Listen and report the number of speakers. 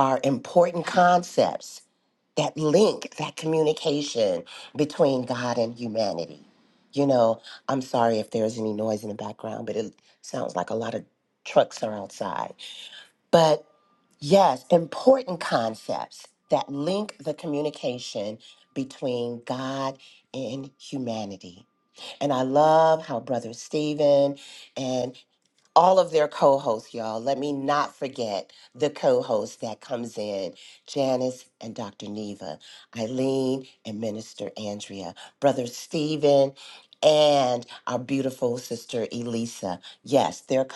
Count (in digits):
1